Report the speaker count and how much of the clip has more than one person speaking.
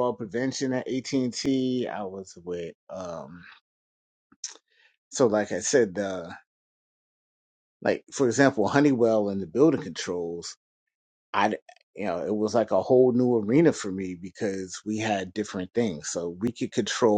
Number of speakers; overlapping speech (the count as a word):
one, no overlap